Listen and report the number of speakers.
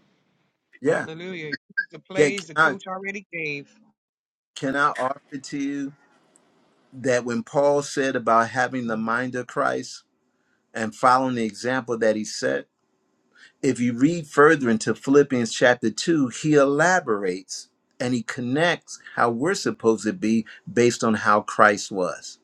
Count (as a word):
two